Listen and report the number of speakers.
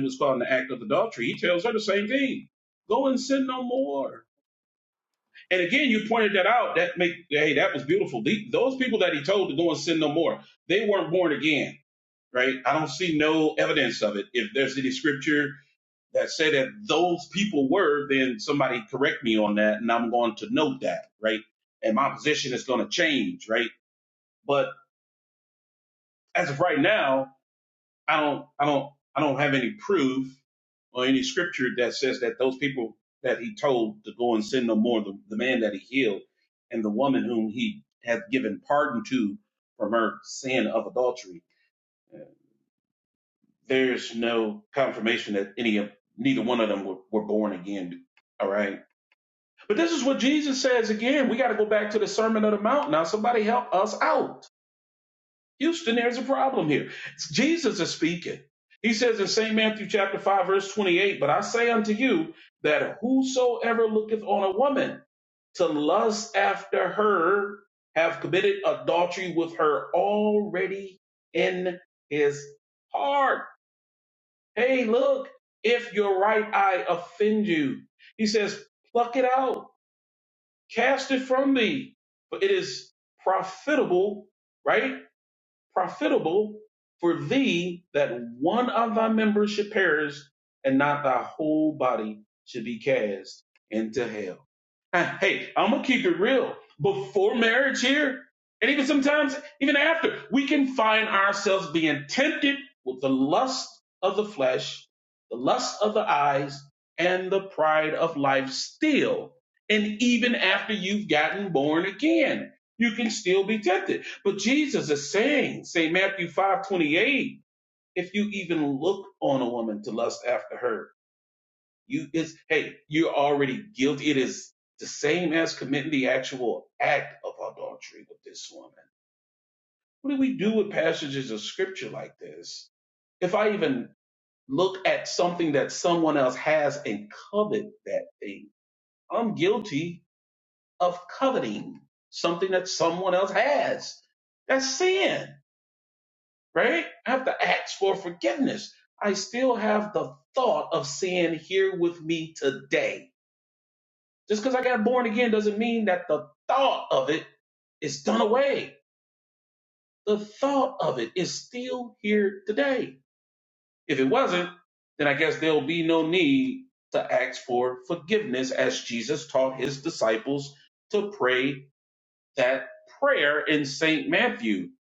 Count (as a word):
one